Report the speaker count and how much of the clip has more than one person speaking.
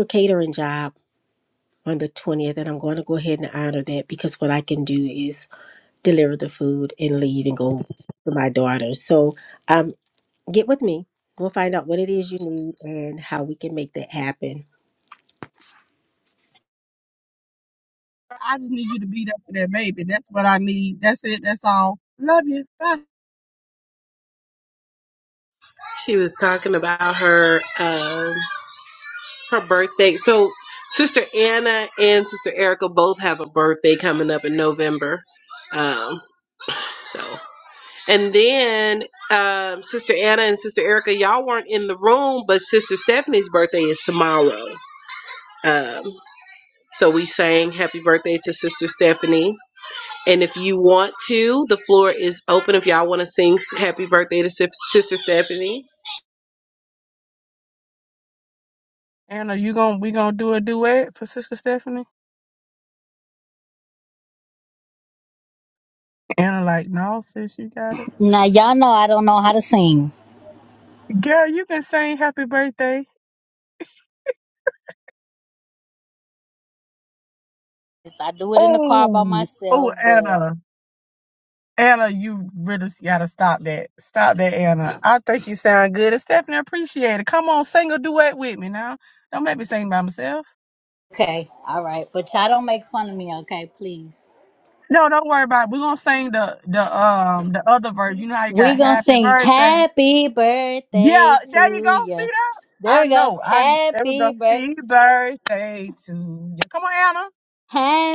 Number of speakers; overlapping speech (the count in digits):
4, about 6%